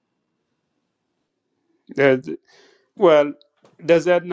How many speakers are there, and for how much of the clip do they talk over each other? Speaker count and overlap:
1, no overlap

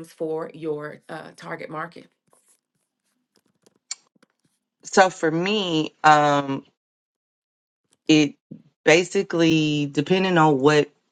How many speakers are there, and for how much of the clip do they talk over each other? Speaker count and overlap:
2, no overlap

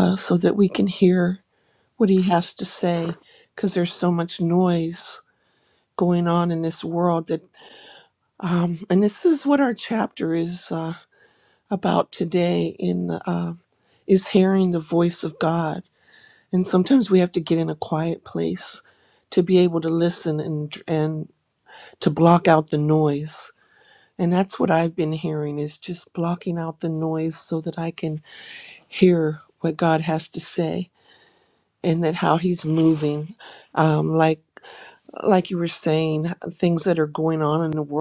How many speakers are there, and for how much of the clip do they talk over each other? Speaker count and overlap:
1, no overlap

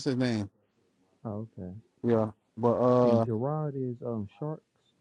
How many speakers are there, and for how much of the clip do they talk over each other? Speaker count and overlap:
2, about 5%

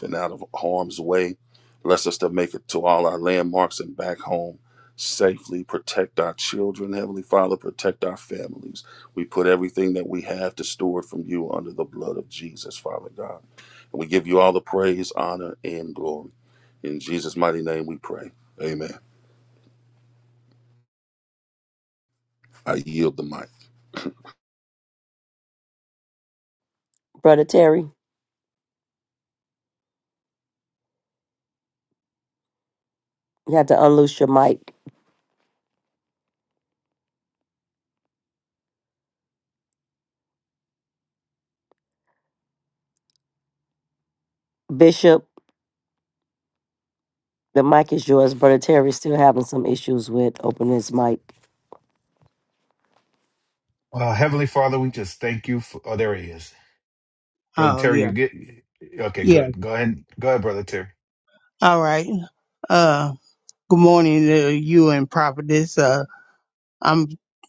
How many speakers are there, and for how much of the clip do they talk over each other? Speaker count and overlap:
4, about 1%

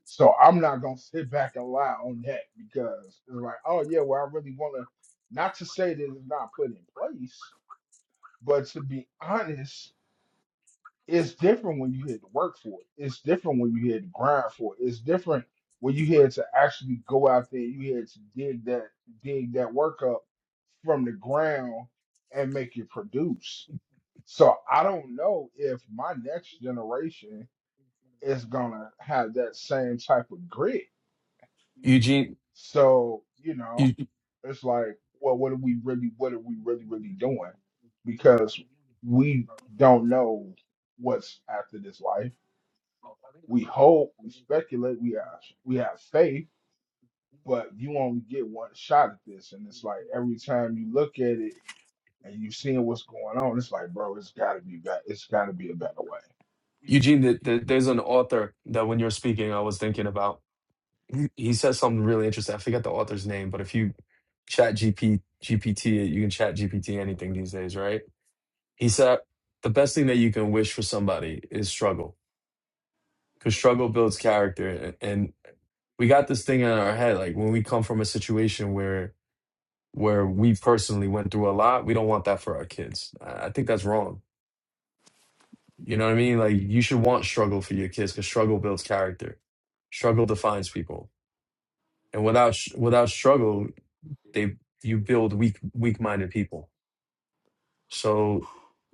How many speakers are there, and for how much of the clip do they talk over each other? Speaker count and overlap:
2, under 1%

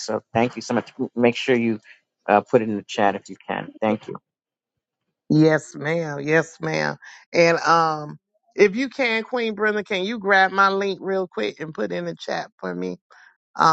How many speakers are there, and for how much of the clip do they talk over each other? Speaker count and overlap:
2, no overlap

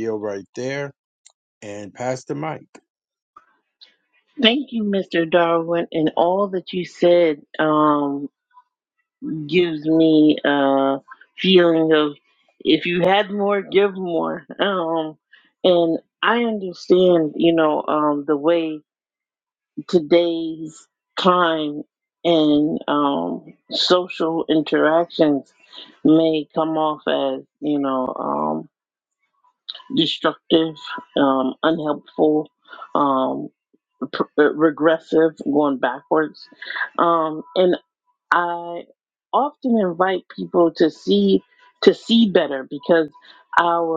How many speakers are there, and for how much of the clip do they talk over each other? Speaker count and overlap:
2, no overlap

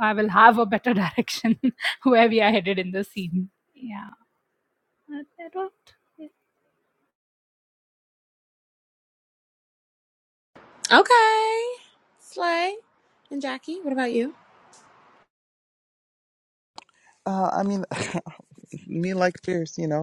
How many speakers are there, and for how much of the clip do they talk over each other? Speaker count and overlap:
3, no overlap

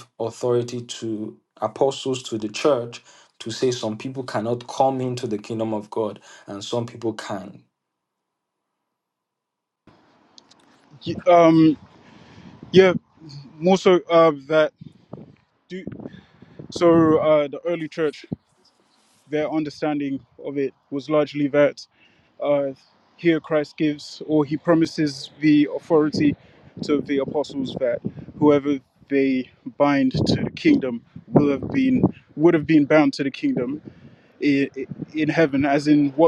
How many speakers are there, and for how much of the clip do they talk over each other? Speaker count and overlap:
2, no overlap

